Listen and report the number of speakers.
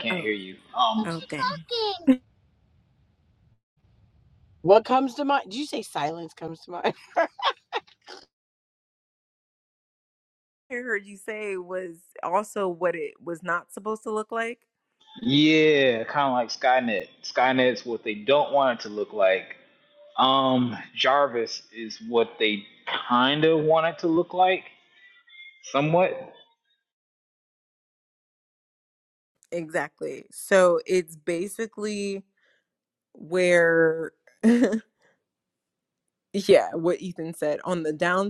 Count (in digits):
3